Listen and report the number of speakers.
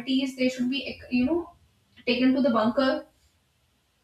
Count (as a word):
one